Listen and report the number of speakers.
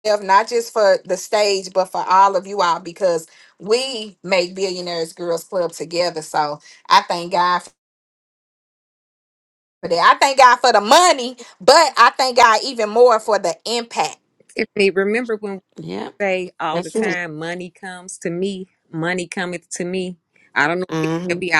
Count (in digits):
3